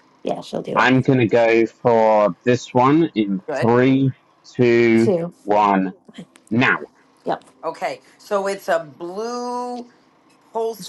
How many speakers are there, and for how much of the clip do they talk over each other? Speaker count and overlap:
3, about 5%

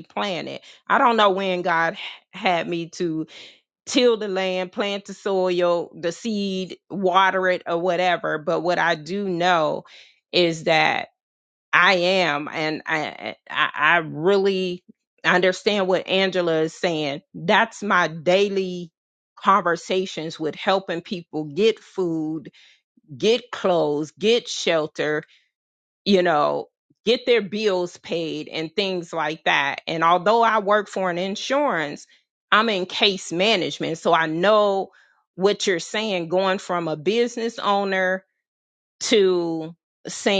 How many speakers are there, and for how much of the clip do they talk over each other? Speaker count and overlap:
1, no overlap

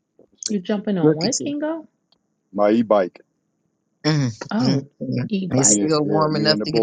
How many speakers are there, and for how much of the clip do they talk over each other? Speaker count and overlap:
3, about 34%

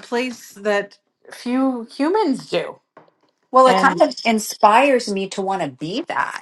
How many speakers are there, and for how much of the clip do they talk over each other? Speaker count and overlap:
2, about 5%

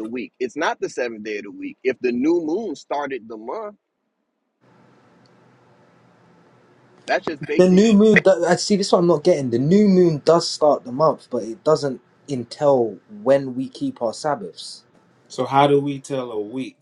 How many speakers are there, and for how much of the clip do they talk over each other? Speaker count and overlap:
3, about 1%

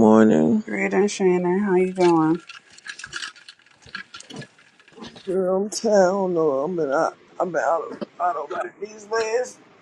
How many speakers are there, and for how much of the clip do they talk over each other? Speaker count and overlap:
2, no overlap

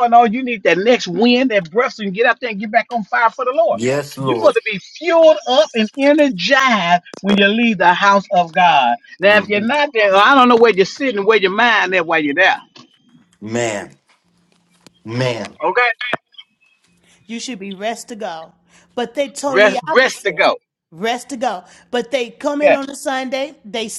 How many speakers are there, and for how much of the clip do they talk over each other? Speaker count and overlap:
3, about 8%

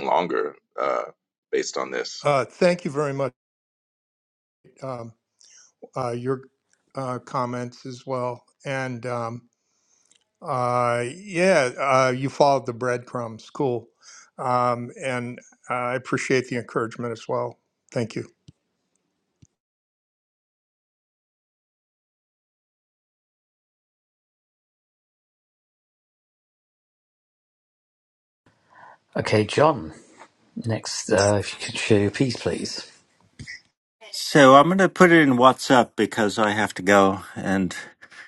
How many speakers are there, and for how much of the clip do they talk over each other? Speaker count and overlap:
4, no overlap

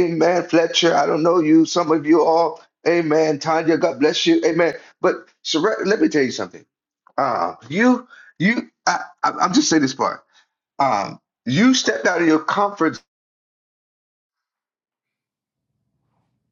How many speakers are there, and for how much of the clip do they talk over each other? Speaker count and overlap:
1, no overlap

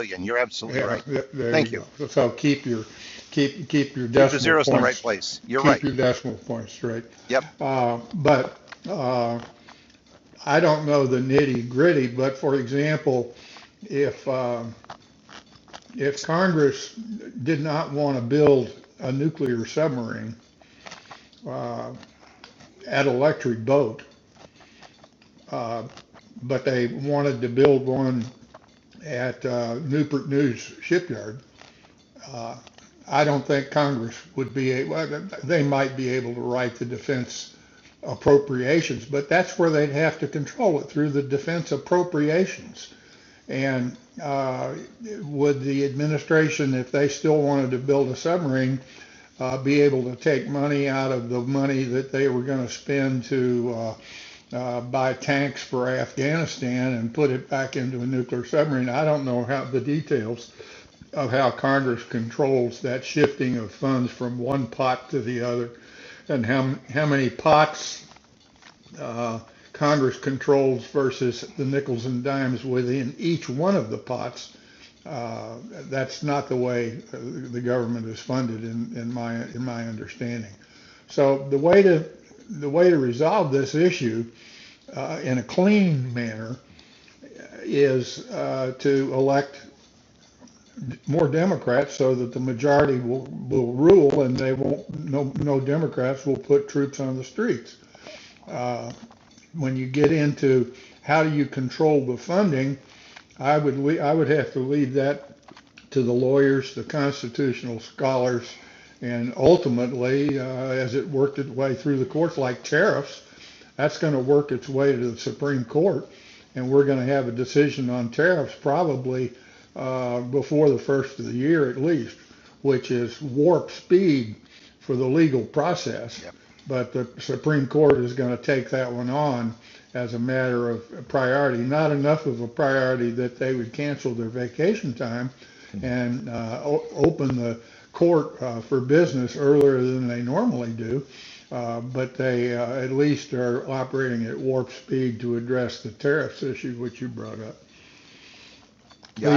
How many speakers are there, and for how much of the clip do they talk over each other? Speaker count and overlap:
2, about 1%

